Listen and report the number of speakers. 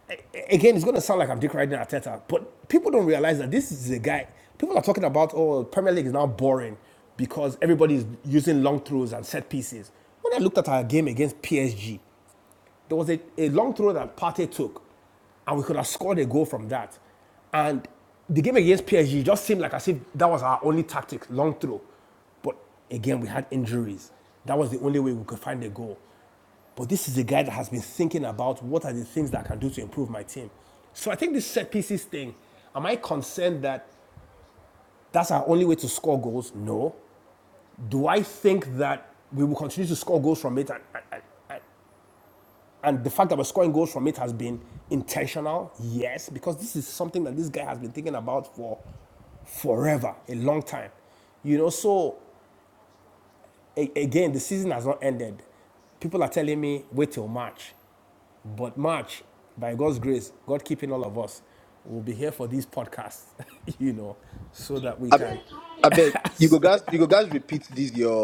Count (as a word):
two